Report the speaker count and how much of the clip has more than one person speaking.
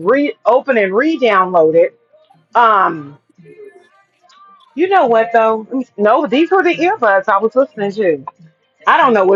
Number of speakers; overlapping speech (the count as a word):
one, no overlap